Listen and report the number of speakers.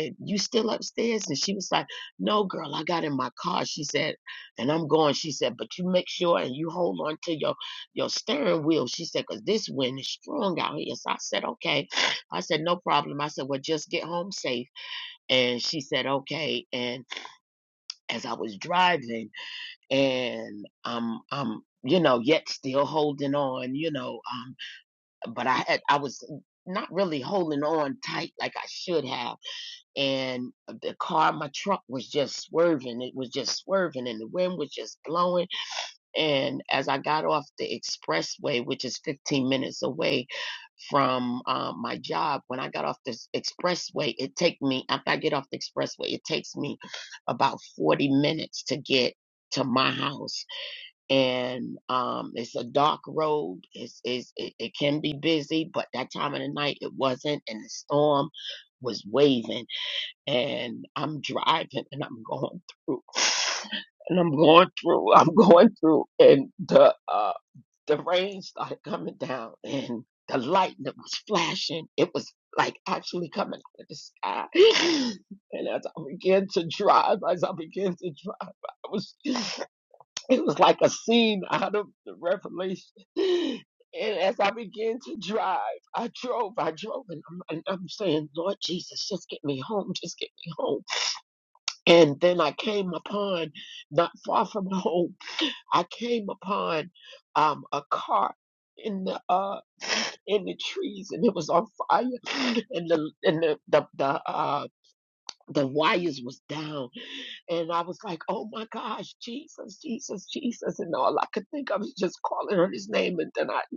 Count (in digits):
1